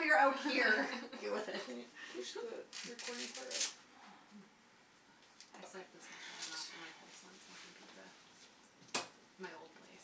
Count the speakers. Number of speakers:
3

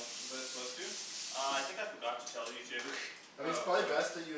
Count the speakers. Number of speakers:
3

